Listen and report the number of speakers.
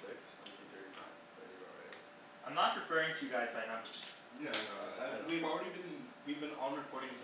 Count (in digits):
3